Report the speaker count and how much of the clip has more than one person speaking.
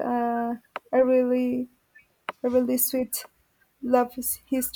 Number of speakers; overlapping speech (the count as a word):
one, no overlap